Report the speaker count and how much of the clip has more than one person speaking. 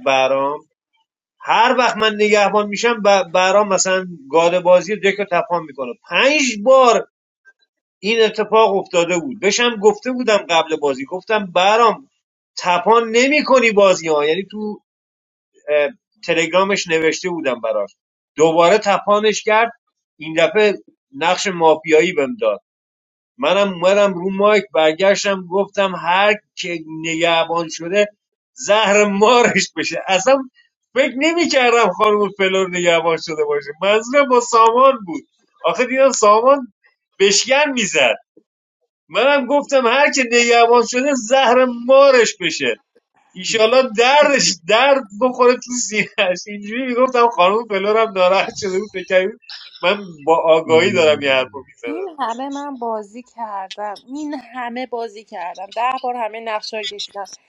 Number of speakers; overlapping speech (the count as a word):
two, under 1%